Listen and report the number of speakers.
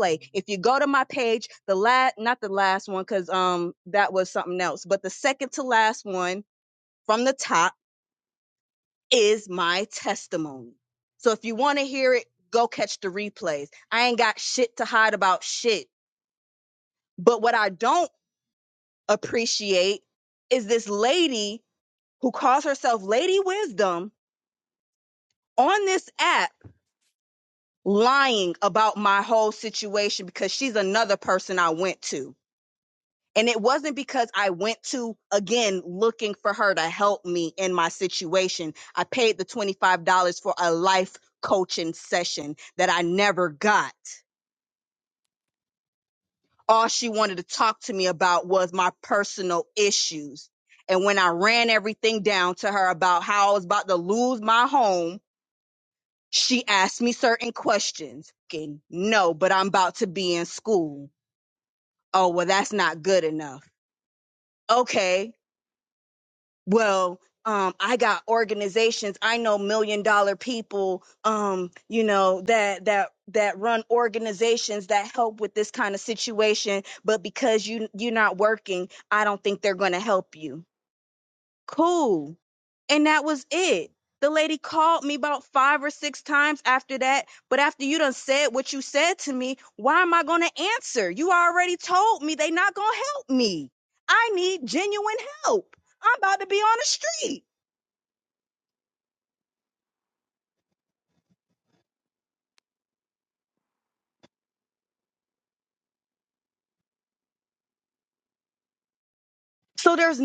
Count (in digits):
1